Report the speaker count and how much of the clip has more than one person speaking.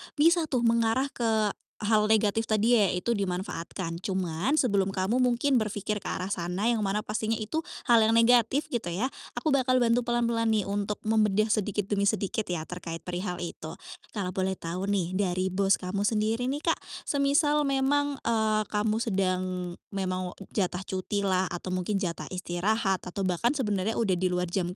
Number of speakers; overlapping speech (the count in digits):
1, no overlap